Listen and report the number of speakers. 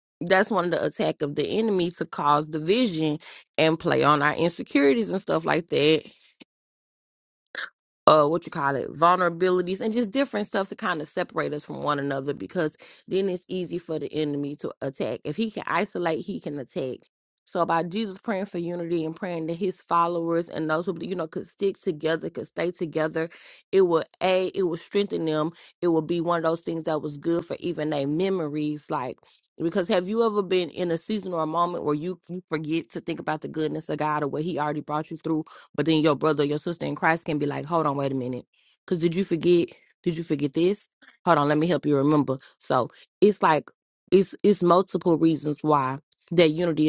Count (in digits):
1